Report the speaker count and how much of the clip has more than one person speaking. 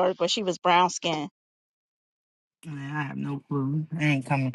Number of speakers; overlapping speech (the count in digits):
2, no overlap